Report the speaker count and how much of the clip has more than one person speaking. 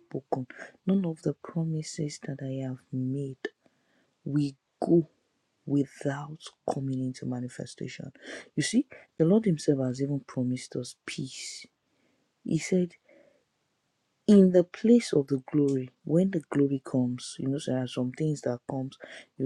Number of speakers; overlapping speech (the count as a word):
one, no overlap